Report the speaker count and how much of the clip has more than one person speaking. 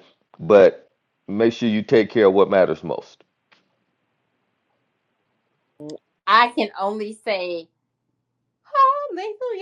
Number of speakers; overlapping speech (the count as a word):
two, no overlap